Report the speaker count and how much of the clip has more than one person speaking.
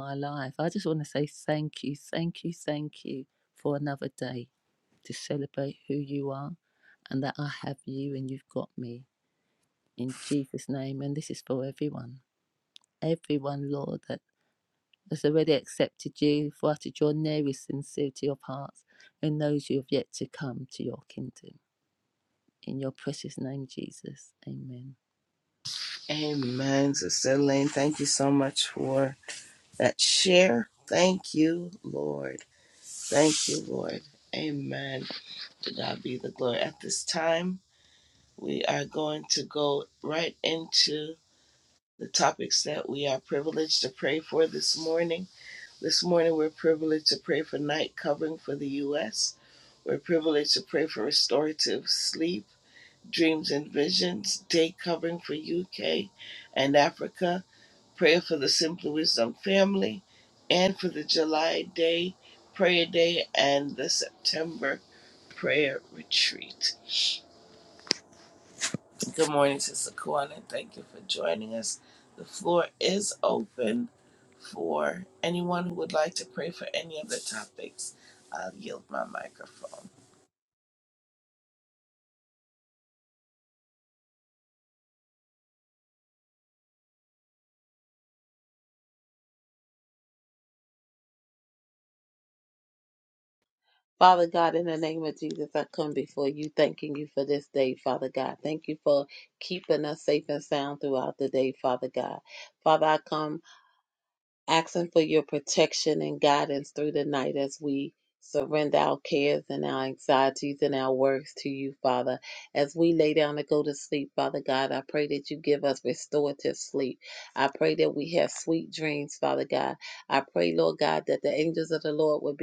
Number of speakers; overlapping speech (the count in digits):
3, no overlap